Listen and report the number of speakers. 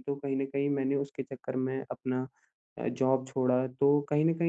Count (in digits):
1